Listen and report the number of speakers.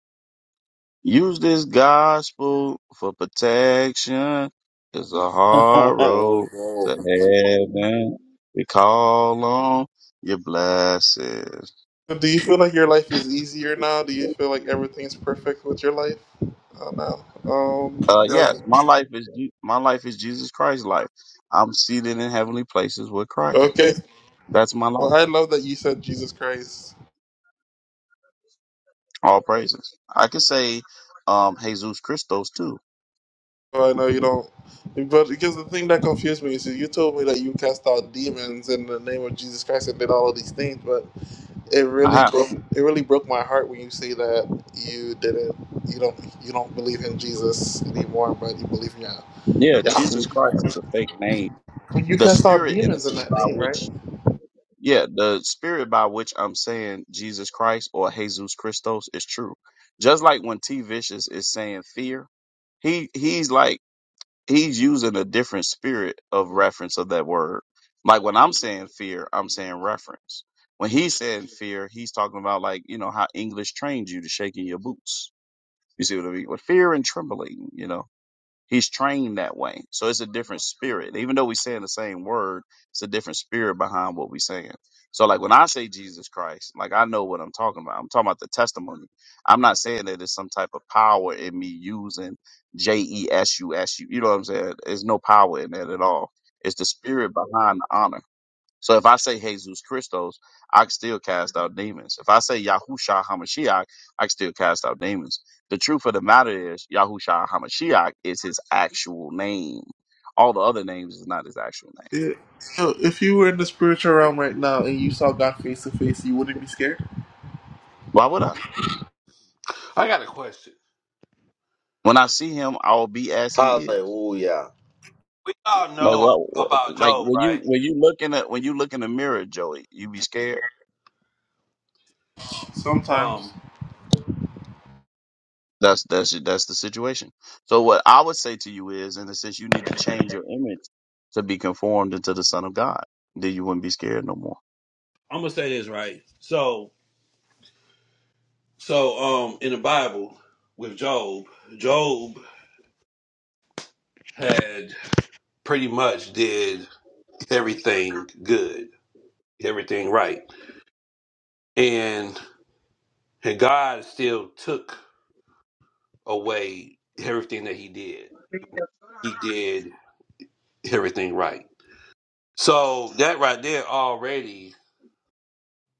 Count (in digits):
4